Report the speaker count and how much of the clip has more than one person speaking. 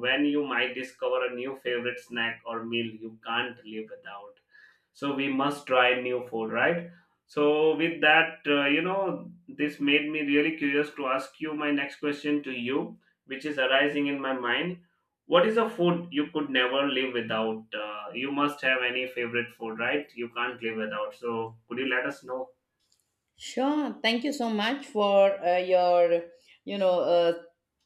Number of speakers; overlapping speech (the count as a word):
two, no overlap